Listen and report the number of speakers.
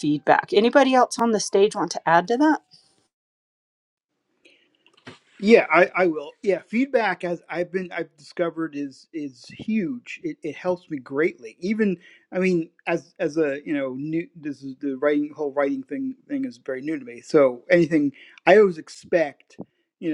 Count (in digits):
2